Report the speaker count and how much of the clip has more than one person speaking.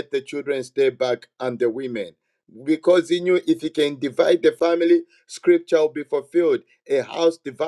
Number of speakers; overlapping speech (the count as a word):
one, no overlap